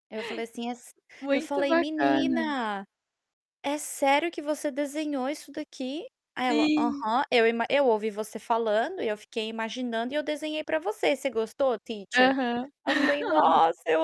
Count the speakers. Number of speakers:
two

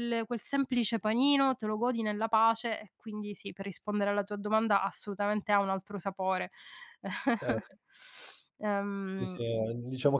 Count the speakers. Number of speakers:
two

